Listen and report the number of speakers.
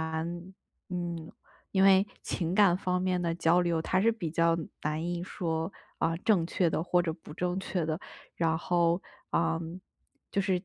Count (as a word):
one